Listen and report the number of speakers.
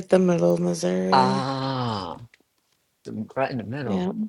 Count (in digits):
2